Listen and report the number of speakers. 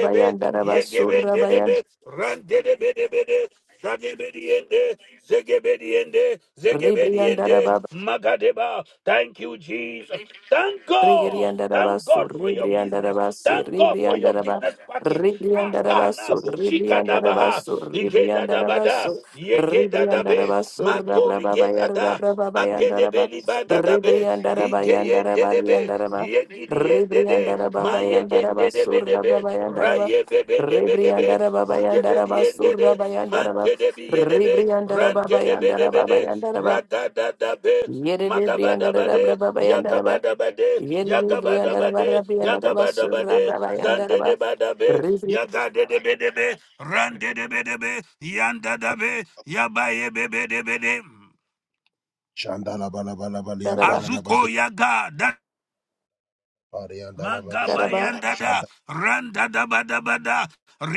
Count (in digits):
3